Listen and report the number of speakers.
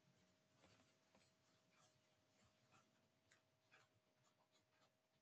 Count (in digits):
0